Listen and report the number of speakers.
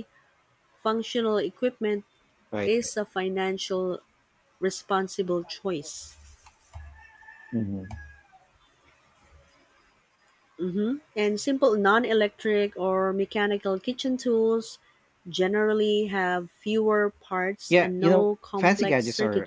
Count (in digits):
2